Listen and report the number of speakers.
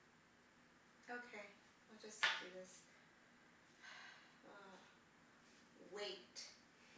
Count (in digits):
1